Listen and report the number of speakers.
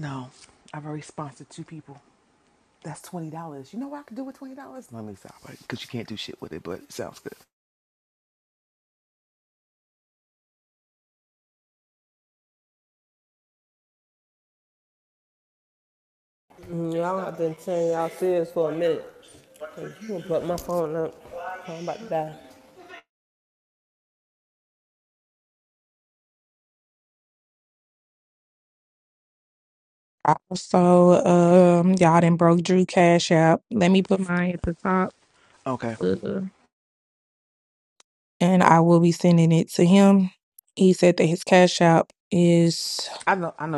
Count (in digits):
3